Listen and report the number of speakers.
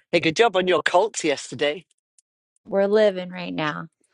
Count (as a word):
two